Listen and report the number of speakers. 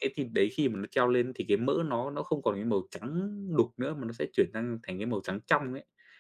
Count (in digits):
1